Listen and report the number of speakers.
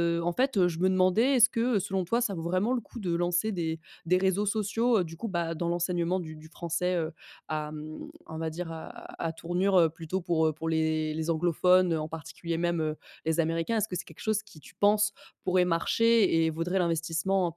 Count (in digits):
1